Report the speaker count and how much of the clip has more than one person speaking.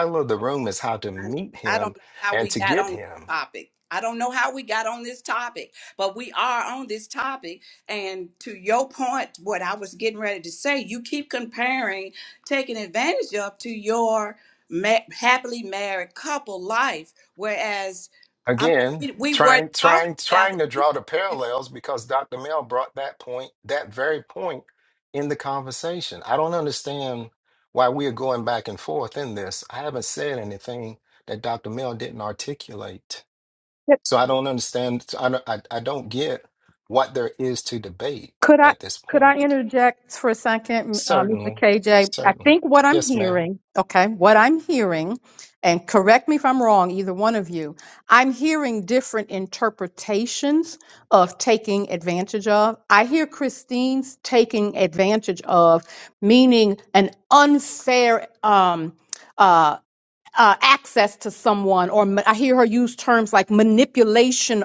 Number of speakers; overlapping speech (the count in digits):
3, about 9%